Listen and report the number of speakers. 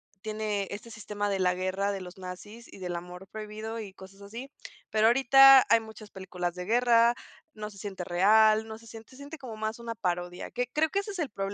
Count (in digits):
1